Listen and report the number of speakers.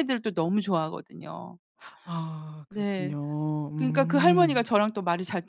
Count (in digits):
2